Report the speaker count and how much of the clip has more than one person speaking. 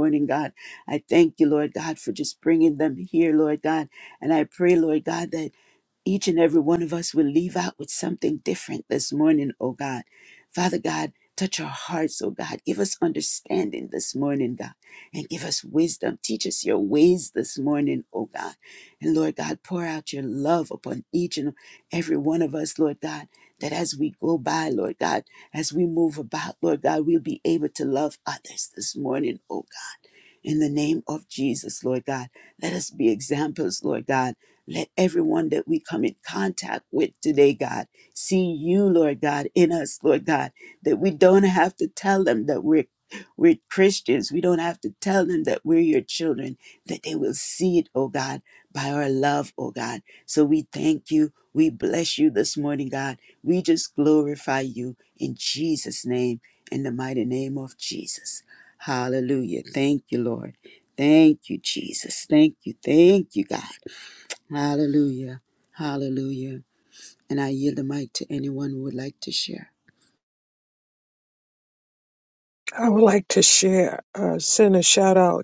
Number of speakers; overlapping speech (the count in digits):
2, no overlap